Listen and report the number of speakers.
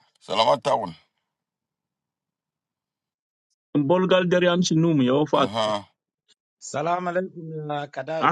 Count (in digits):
3